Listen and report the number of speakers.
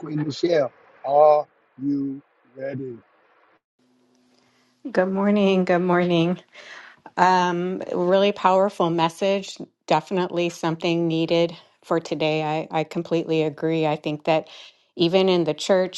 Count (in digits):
2